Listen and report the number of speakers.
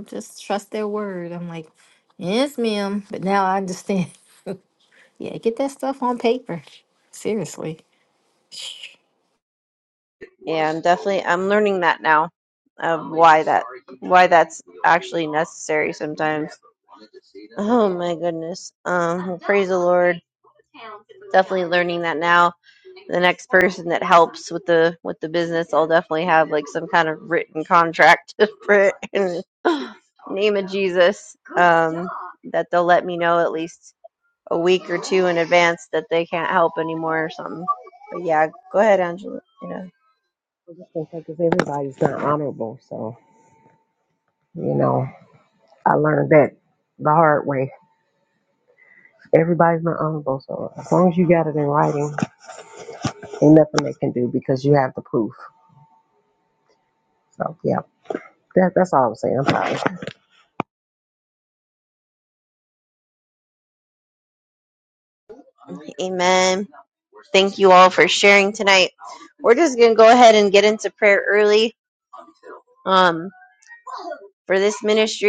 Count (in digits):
3